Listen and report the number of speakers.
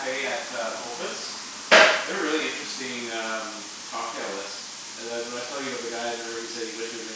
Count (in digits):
1